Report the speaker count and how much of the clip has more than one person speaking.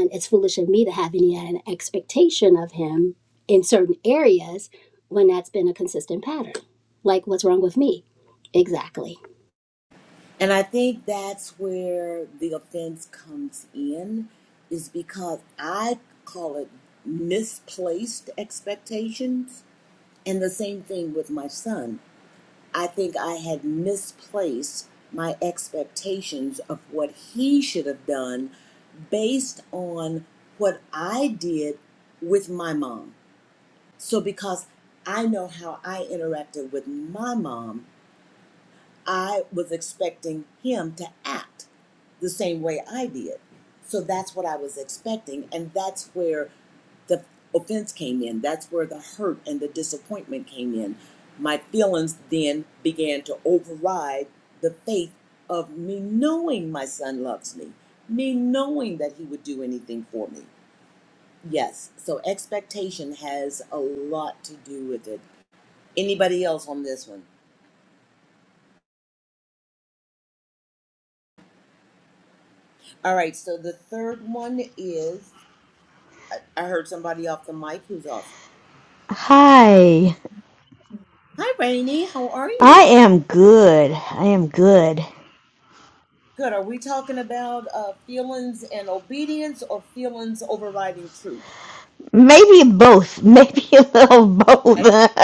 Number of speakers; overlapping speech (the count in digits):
3, about 1%